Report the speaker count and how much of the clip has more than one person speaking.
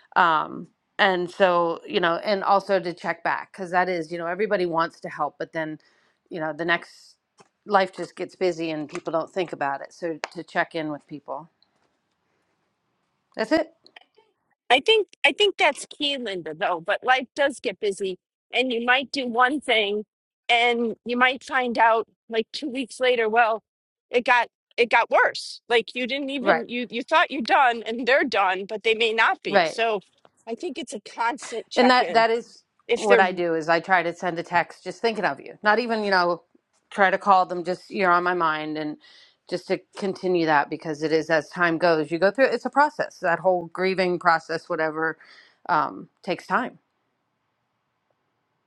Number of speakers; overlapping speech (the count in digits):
2, about 3%